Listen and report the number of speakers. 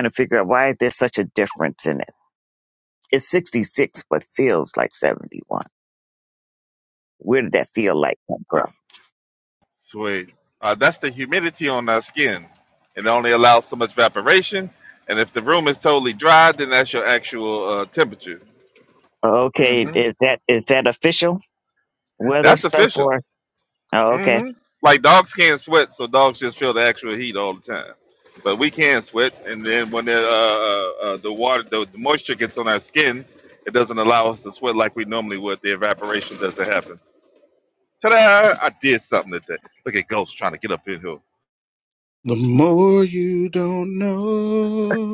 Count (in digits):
3